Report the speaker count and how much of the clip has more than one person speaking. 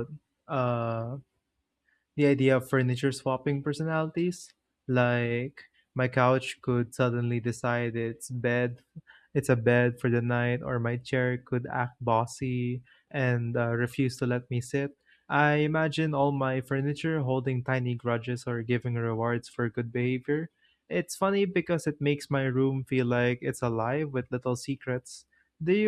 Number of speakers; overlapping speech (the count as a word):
one, no overlap